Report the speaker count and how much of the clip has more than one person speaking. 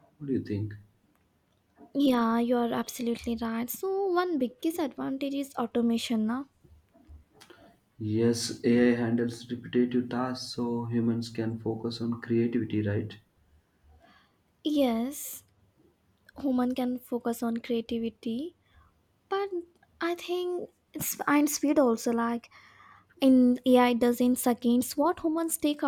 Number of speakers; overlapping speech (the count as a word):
two, no overlap